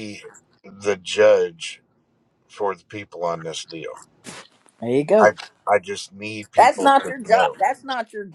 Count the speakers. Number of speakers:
2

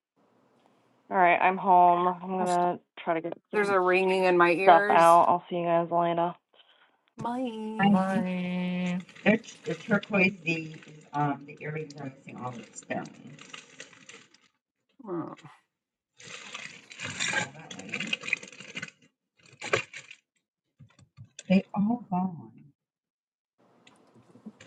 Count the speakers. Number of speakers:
4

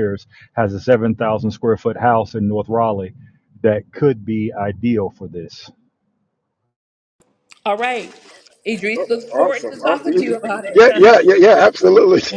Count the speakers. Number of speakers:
3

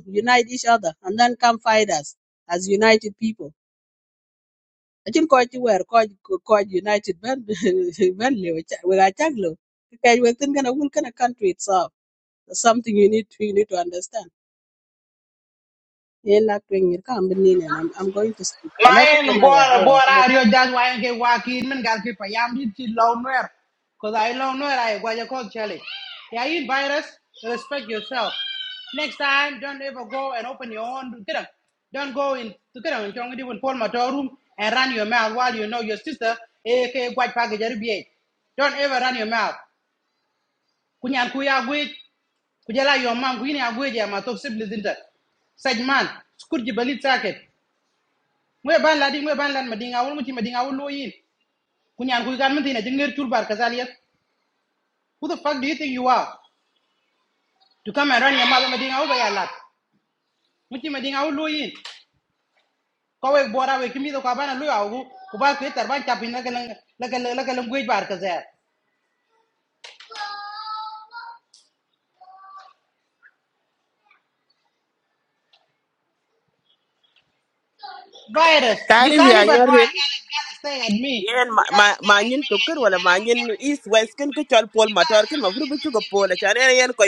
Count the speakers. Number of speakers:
3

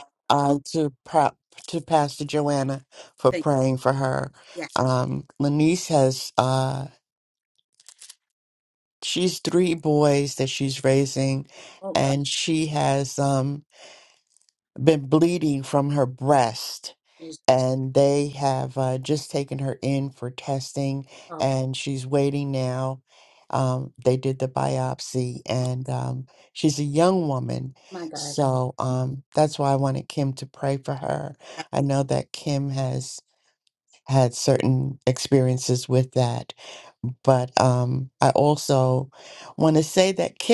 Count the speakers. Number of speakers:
2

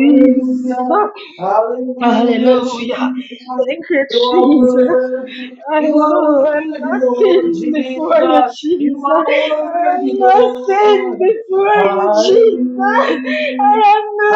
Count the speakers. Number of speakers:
2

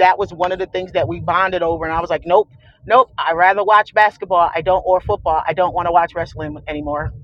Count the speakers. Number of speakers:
1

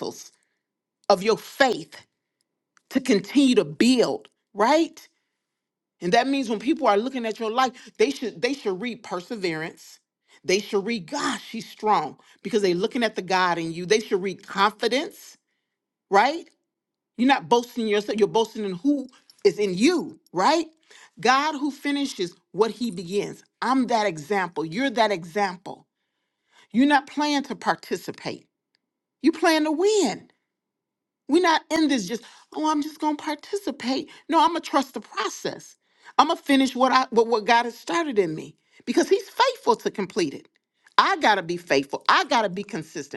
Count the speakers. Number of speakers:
1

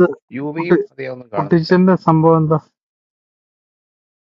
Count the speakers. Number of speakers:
2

